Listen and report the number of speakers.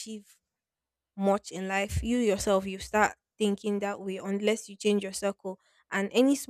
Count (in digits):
1